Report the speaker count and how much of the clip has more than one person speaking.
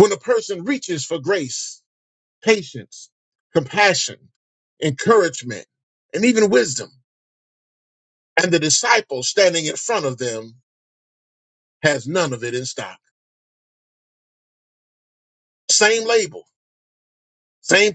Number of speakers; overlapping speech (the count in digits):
1, no overlap